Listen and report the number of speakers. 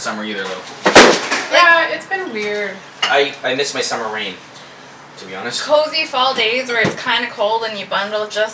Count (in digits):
3